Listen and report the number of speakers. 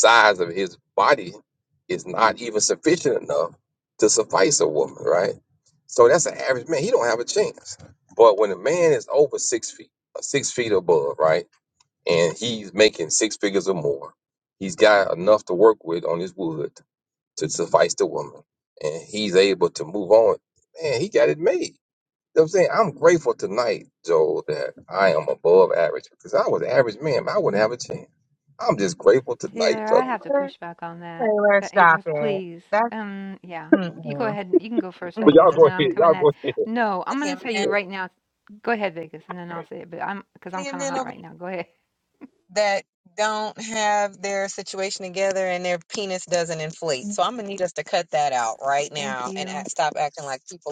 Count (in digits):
3